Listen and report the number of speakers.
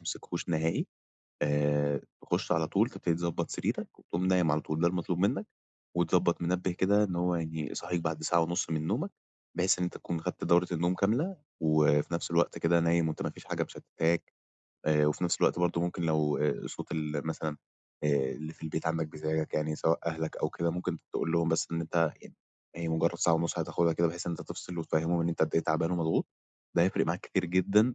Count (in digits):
1